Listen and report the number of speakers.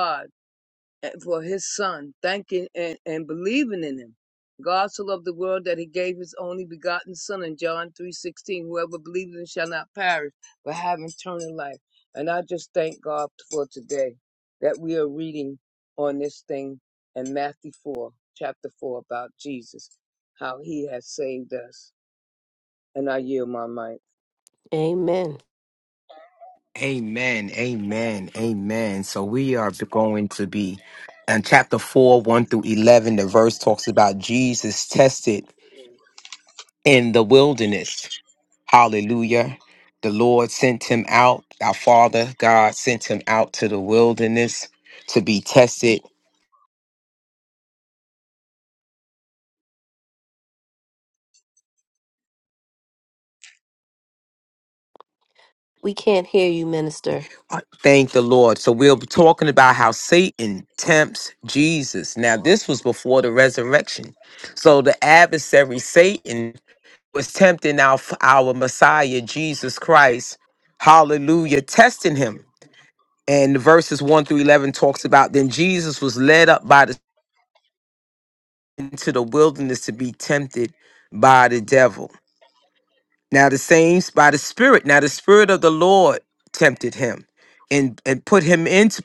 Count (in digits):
3